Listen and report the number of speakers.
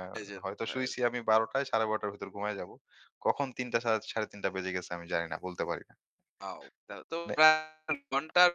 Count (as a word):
two